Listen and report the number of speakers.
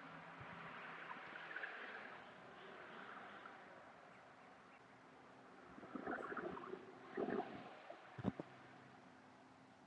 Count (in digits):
0